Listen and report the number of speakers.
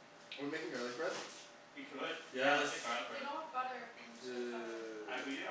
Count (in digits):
3